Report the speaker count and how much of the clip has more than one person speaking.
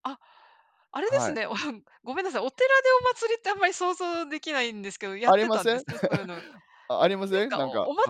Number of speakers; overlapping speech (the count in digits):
2, about 18%